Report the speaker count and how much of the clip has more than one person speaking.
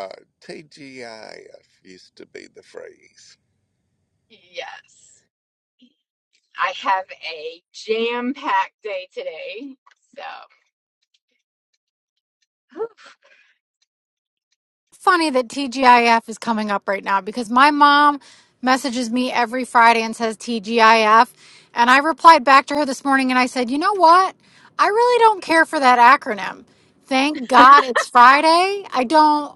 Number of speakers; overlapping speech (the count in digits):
3, no overlap